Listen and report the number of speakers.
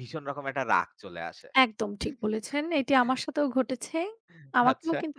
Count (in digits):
2